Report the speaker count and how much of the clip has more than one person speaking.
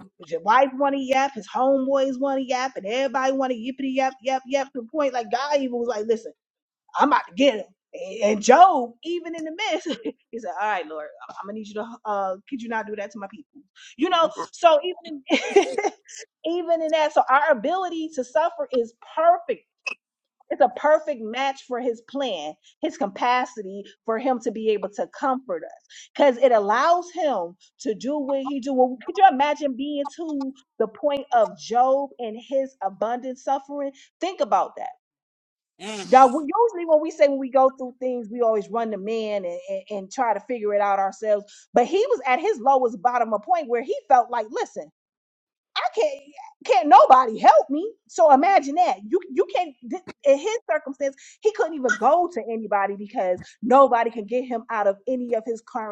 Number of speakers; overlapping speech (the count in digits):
1, no overlap